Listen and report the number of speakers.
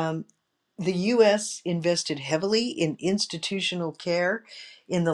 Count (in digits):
1